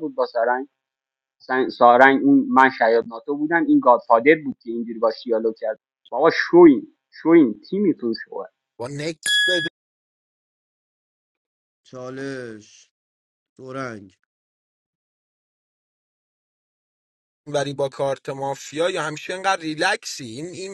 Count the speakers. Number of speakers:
3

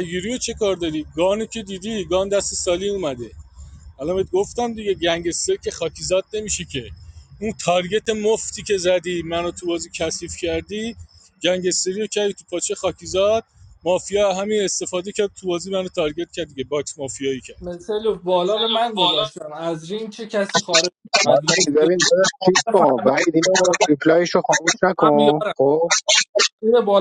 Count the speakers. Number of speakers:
3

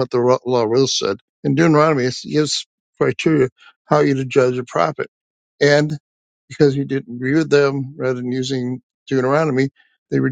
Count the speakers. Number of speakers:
1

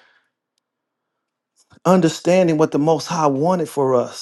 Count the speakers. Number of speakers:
1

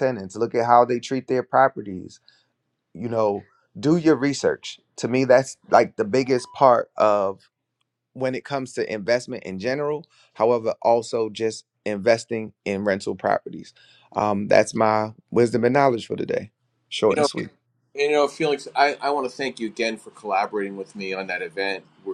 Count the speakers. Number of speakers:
2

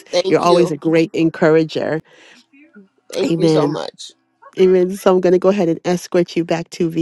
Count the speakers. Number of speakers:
2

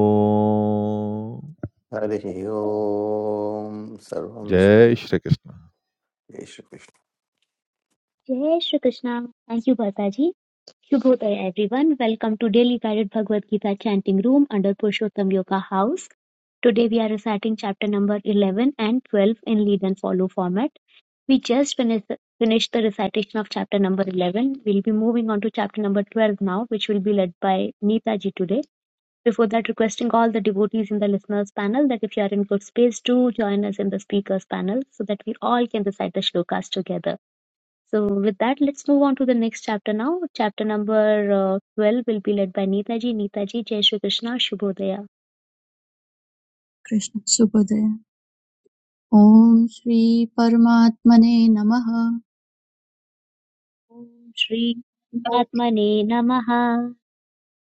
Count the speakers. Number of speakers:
4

